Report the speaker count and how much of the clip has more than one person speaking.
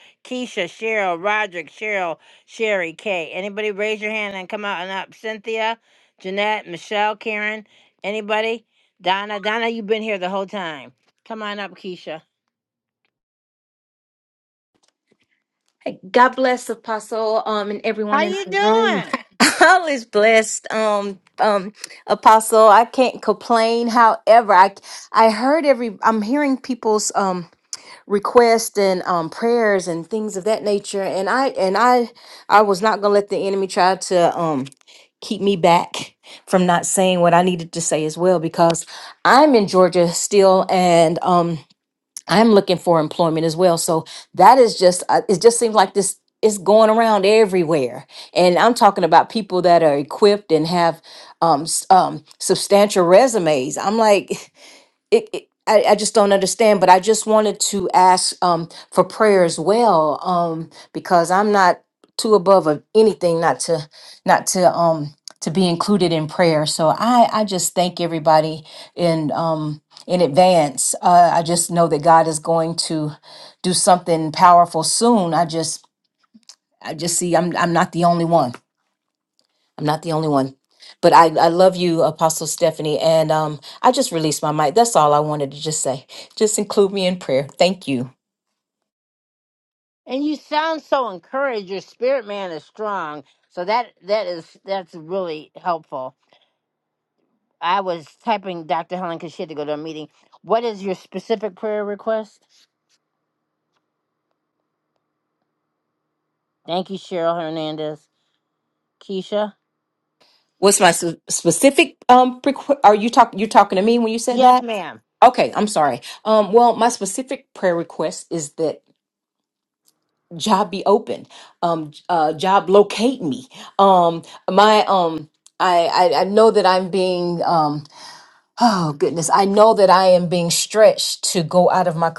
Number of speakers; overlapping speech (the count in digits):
2, about 1%